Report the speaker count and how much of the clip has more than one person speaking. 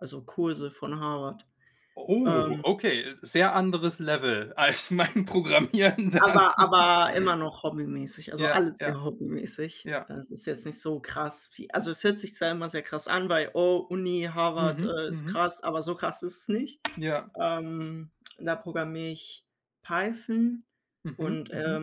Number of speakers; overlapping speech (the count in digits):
2, about 15%